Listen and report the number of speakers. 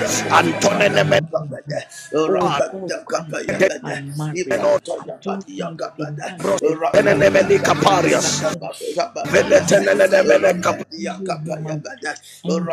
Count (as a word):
three